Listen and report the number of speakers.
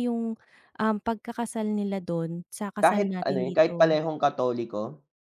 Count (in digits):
2